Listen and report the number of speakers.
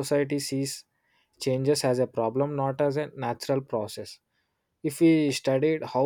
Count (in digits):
1